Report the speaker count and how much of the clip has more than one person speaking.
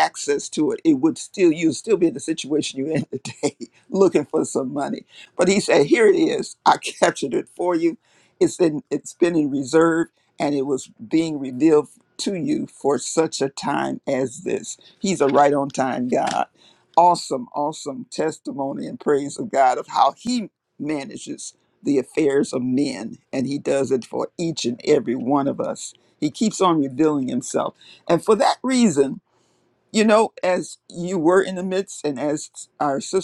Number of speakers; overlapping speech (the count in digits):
1, no overlap